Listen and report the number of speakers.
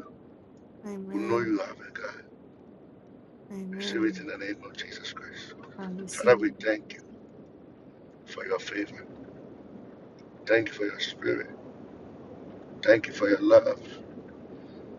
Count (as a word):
two